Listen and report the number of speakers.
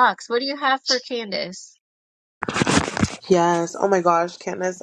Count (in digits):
2